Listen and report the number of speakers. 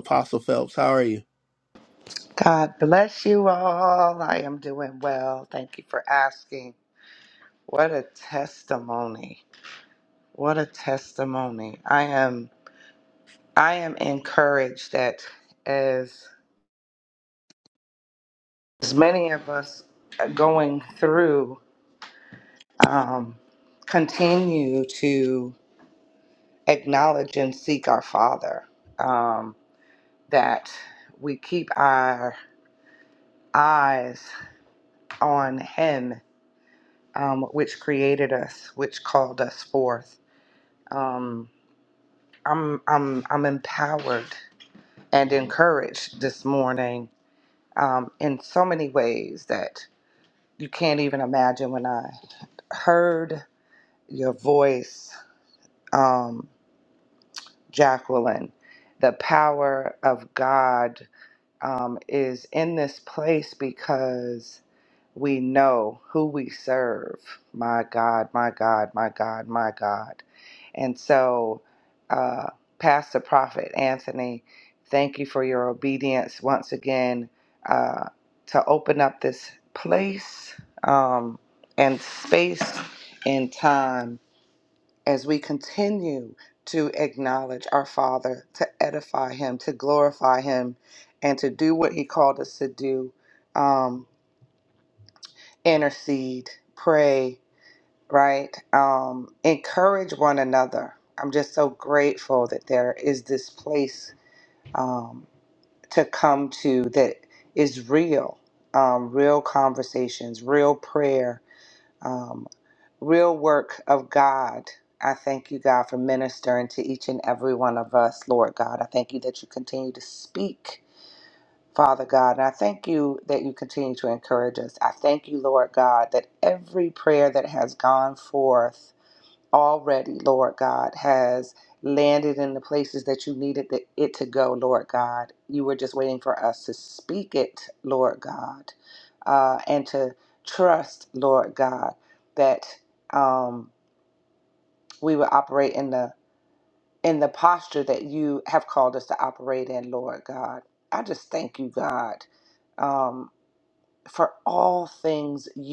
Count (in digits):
2